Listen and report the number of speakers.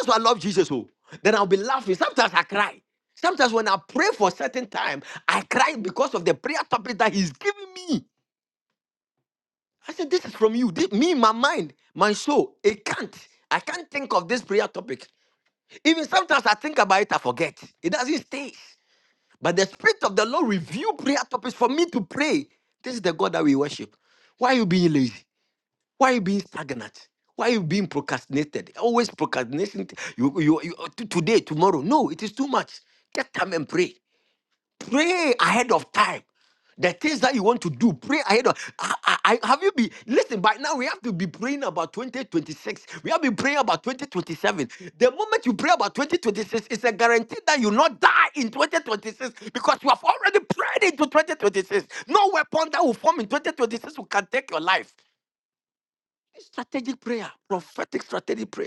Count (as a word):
one